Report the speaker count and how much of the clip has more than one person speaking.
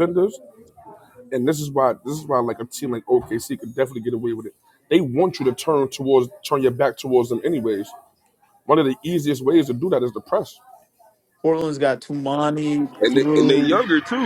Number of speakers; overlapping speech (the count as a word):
three, about 6%